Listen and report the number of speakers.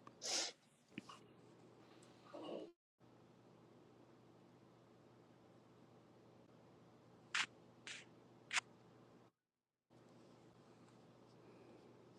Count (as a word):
zero